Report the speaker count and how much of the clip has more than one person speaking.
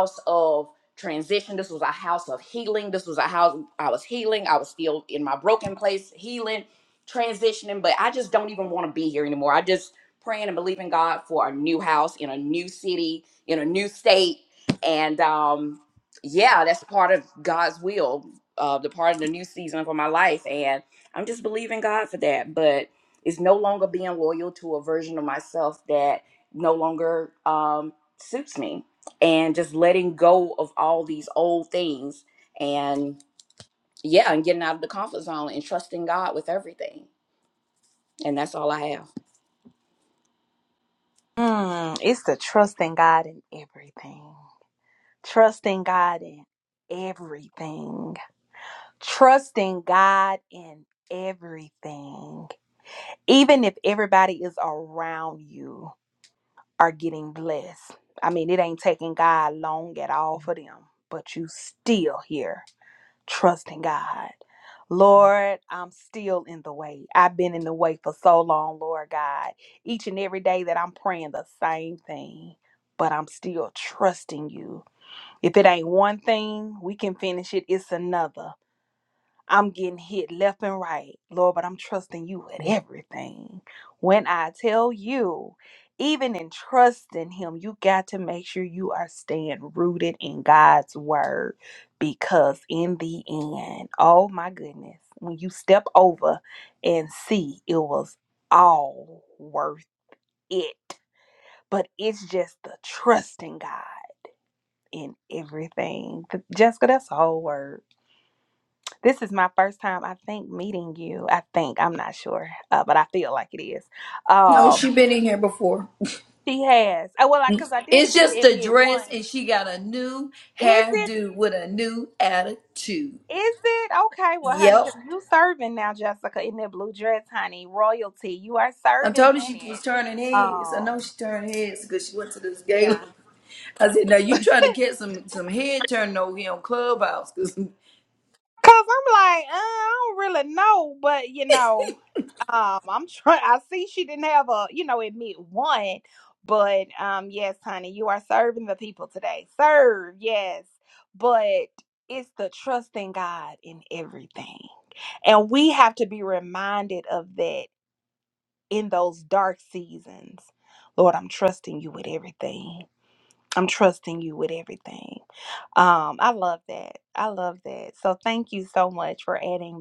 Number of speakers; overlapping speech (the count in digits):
3, about 3%